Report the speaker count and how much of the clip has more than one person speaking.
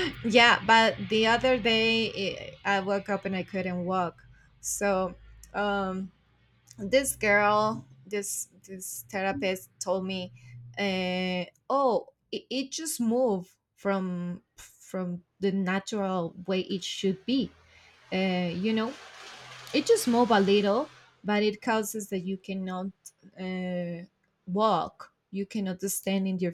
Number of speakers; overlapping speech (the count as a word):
one, no overlap